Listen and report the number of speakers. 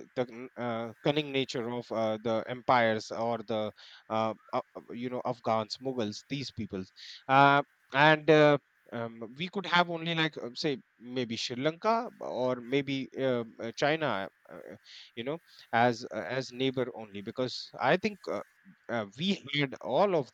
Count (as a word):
one